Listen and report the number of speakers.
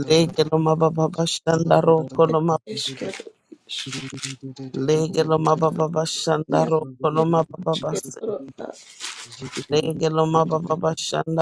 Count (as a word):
two